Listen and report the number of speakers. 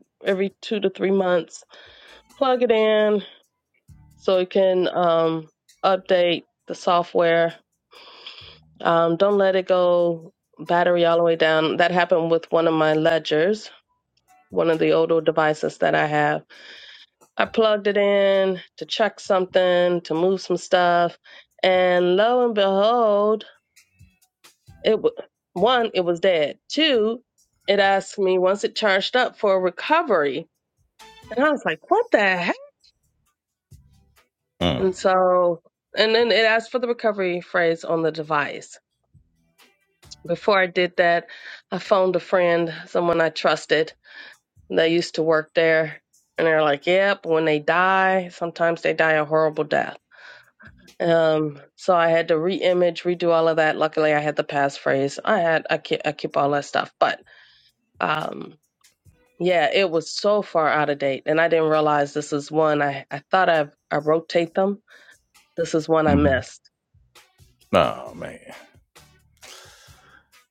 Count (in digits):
2